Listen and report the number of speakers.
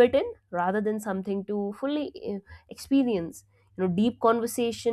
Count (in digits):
1